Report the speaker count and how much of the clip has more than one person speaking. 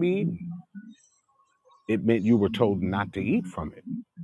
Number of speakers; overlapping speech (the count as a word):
one, no overlap